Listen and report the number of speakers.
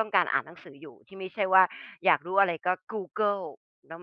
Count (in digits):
1